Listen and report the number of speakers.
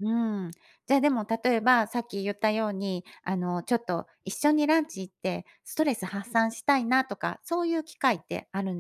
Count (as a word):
one